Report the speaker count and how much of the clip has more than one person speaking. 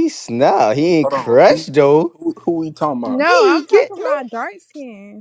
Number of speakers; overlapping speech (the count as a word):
three, about 32%